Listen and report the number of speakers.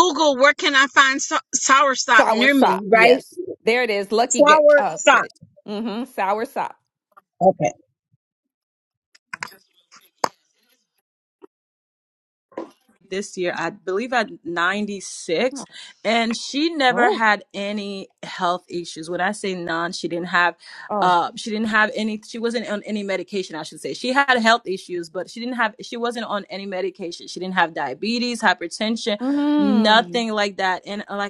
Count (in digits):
3